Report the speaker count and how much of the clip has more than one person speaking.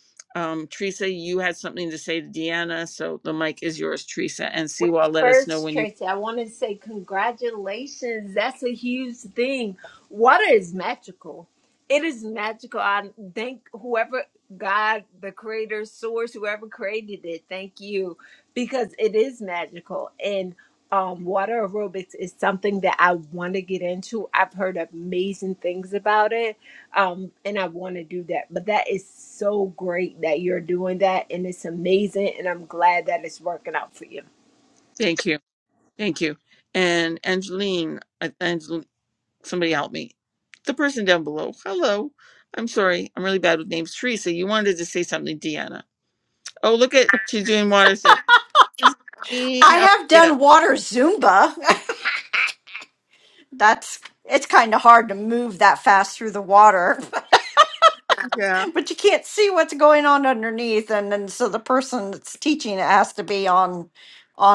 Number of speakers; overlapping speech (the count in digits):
3, about 3%